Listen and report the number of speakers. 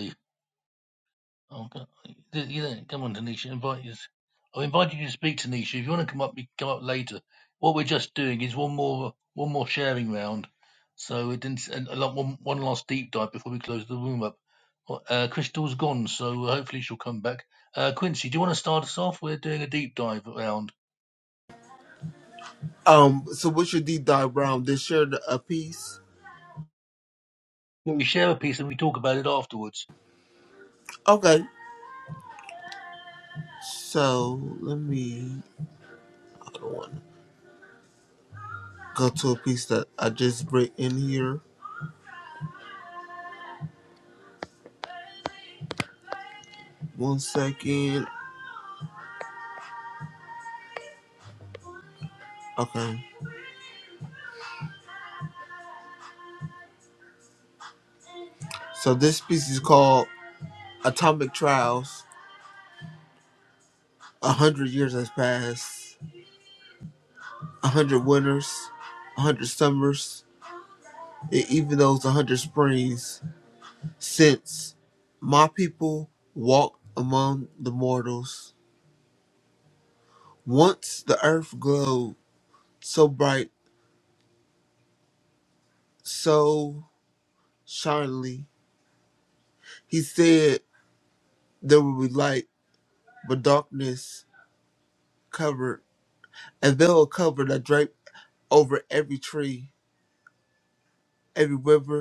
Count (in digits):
2